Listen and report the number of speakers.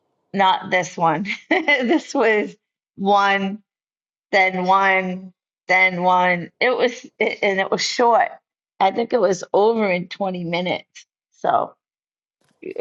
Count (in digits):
1